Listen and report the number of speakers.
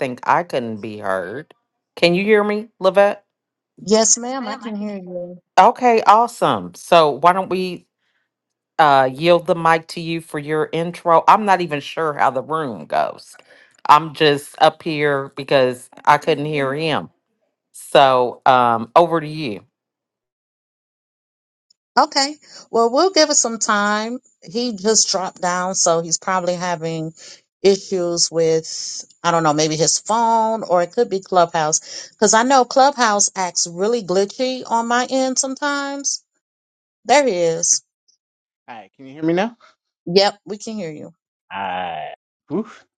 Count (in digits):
3